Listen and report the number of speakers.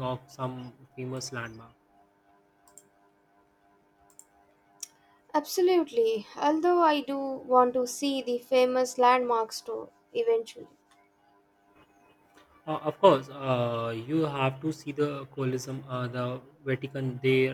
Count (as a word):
two